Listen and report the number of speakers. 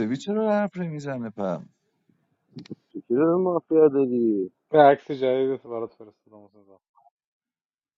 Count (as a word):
three